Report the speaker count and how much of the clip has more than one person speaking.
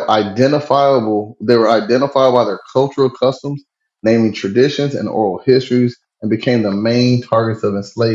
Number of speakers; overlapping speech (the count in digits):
1, no overlap